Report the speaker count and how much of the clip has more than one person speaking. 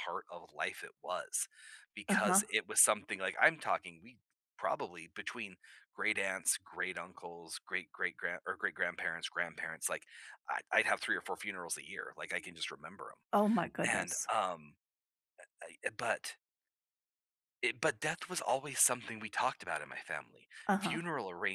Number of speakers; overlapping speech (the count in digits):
2, about 5%